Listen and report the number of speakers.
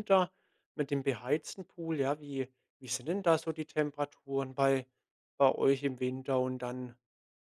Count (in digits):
1